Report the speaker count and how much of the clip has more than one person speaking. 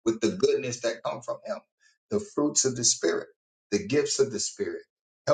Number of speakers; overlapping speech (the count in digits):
1, no overlap